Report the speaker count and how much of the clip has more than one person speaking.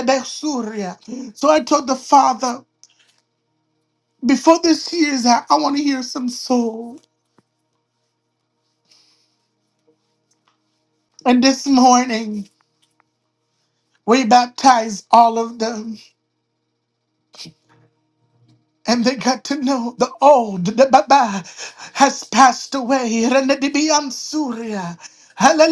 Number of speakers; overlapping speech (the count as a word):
one, no overlap